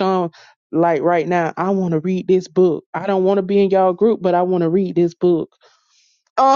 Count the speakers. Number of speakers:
1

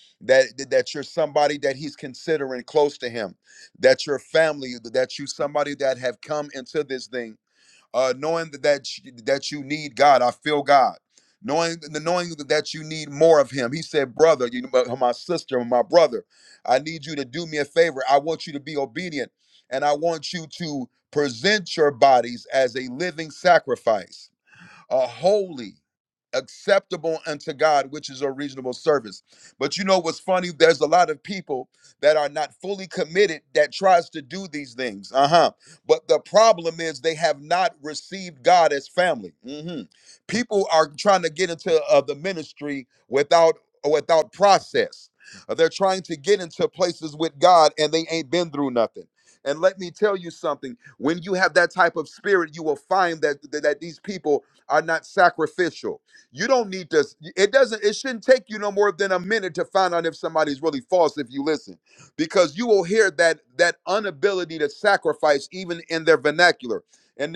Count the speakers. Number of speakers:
1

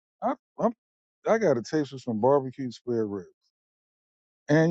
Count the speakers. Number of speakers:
1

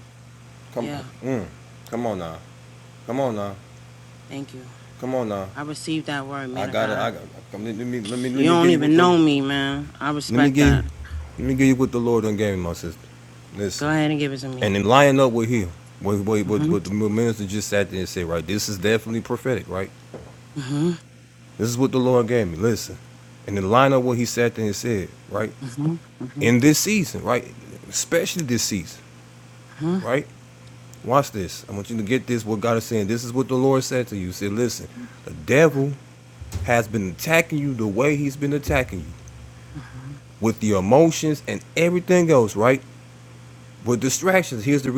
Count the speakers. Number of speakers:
2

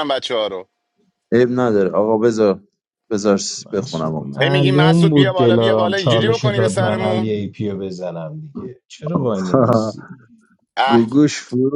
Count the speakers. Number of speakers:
3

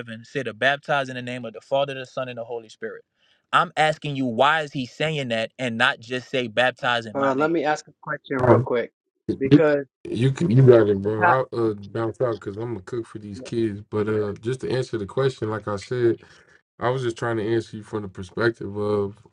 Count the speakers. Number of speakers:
3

